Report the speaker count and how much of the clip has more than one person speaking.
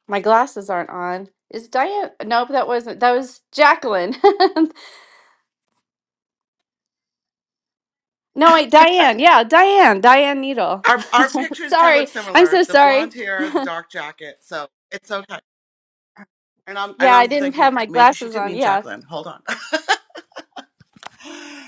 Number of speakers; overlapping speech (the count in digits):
2, about 16%